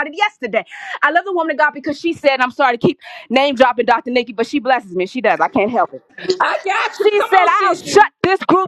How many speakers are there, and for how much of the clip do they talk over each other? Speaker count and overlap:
2, about 12%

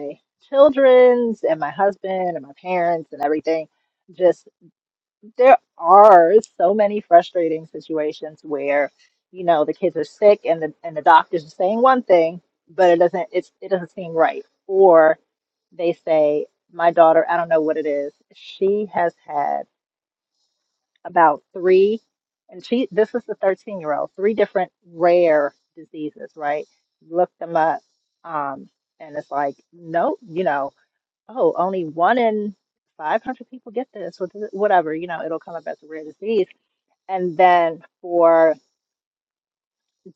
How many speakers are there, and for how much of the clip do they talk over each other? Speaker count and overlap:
1, no overlap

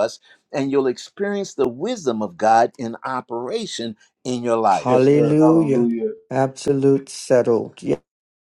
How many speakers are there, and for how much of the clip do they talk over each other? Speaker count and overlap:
3, about 12%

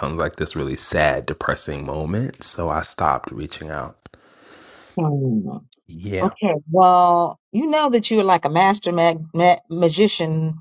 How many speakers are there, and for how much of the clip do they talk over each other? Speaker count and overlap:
2, about 1%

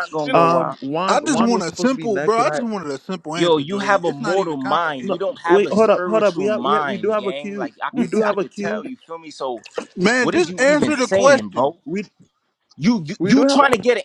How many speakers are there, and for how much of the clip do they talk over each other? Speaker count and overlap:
3, about 69%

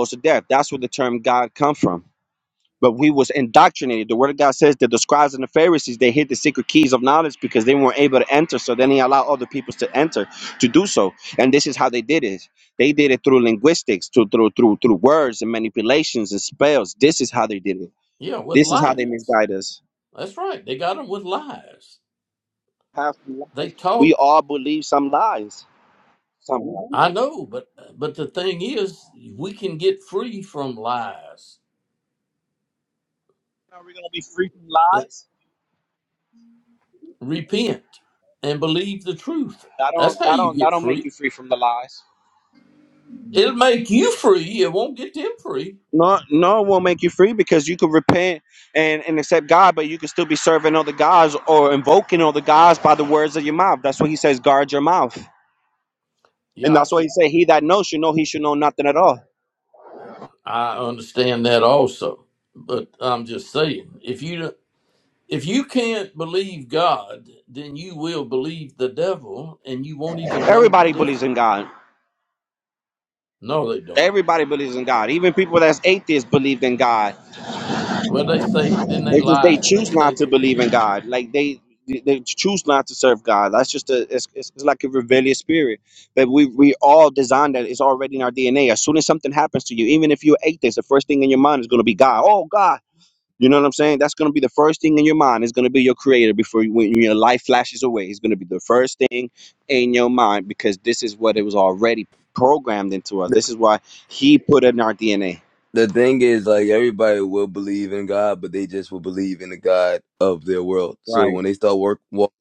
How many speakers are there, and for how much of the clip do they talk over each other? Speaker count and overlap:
3, about 5%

